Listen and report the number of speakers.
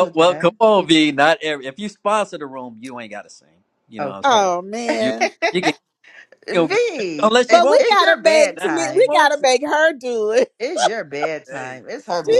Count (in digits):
3